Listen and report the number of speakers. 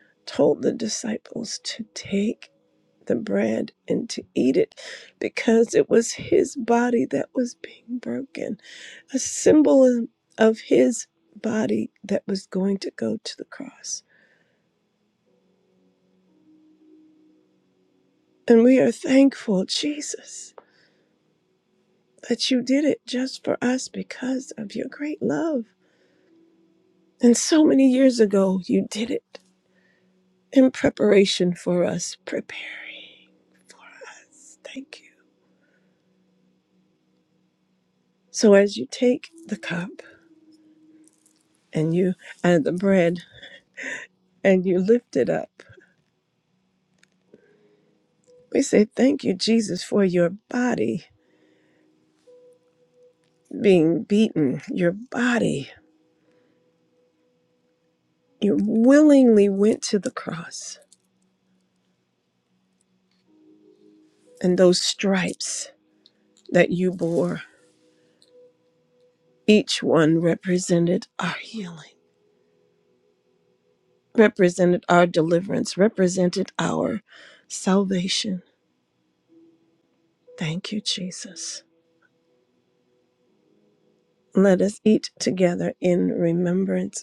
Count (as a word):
one